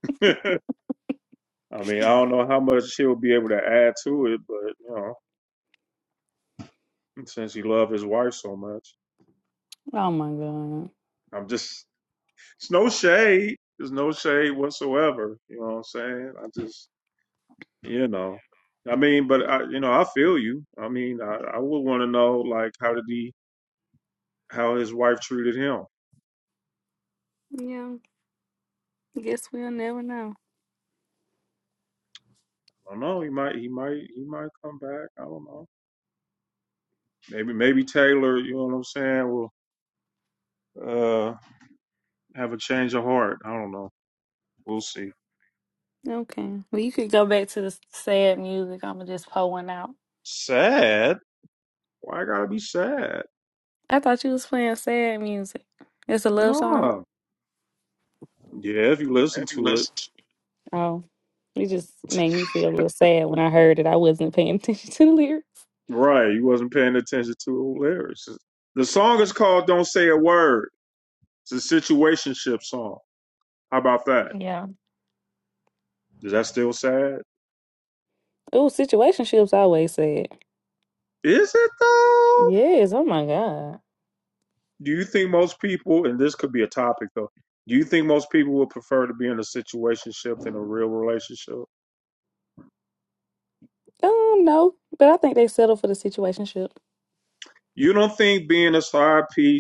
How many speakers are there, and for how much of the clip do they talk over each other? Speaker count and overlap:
two, about 1%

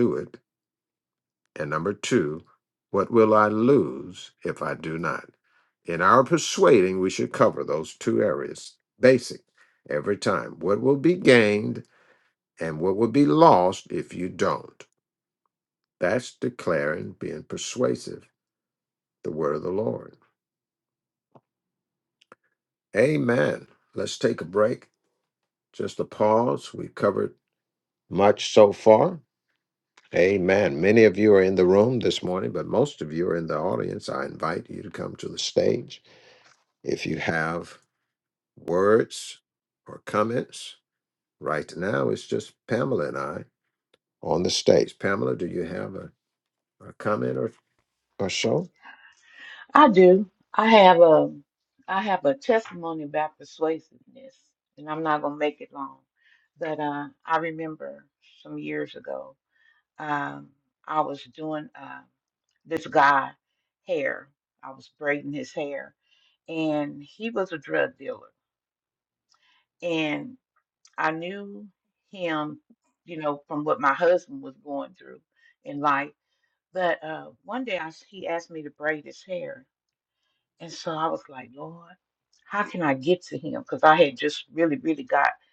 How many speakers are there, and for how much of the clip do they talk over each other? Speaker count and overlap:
two, no overlap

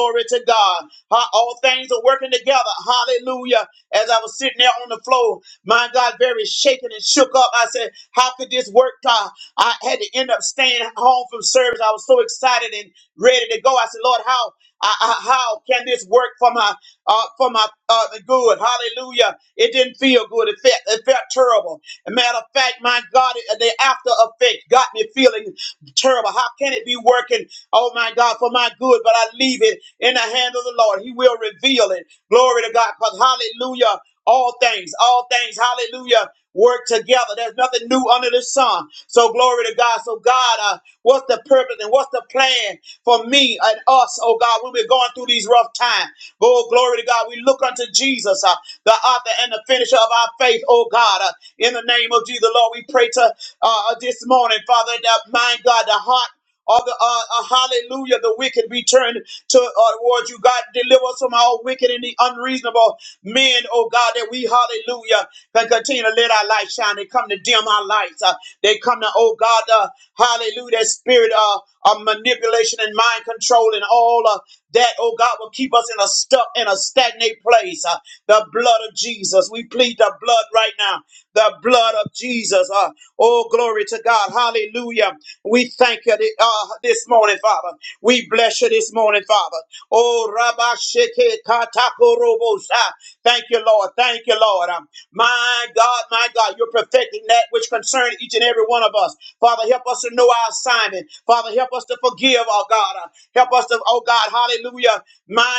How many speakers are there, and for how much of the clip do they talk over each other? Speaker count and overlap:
one, no overlap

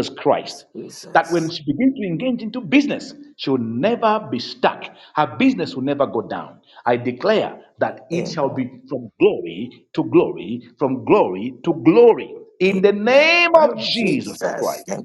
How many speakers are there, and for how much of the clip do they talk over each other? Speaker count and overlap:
two, about 19%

